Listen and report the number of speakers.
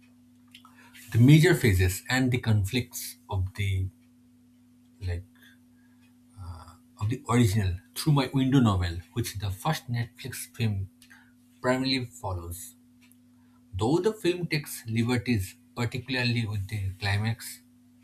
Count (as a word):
one